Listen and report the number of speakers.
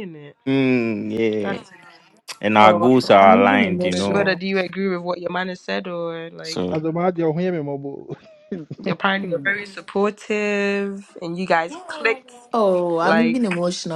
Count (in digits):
4